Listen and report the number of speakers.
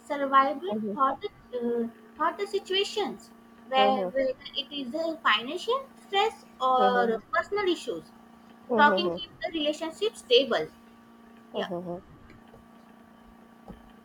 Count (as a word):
two